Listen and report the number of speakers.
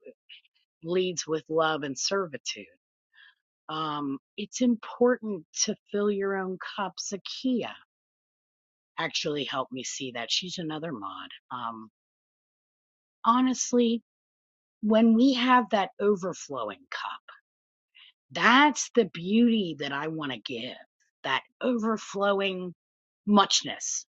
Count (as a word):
one